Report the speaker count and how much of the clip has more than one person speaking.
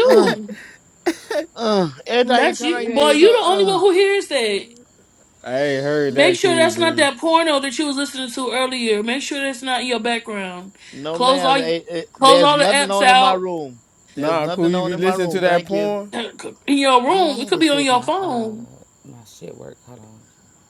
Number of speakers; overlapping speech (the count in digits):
4, about 38%